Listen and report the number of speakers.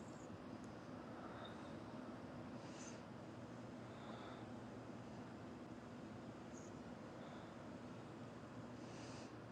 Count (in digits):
0